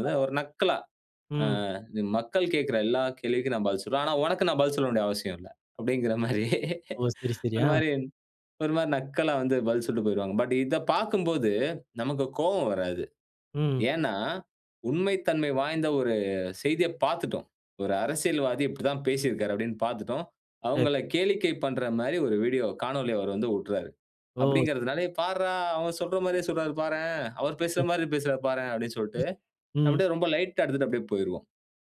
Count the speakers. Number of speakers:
2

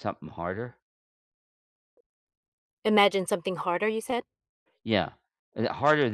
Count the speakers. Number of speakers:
2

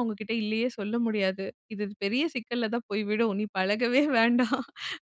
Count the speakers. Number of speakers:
1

